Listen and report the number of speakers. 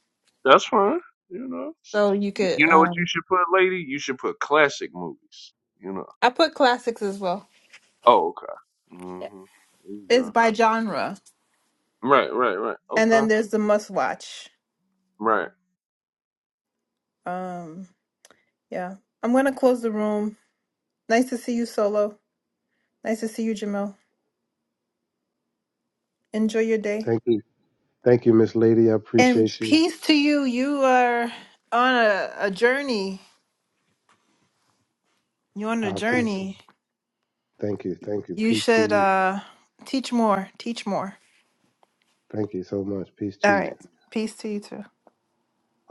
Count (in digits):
3